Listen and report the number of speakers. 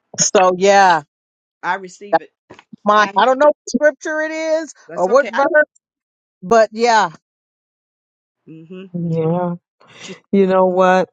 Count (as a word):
three